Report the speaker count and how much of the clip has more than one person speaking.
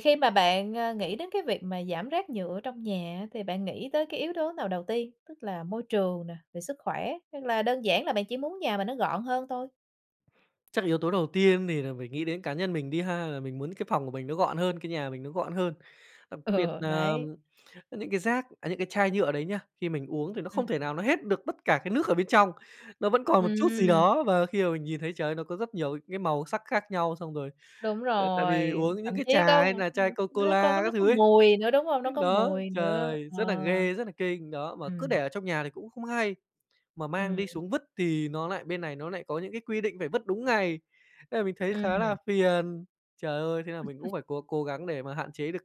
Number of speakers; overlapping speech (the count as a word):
two, about 15%